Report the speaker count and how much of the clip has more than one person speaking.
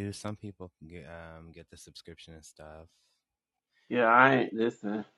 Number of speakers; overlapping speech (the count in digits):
2, no overlap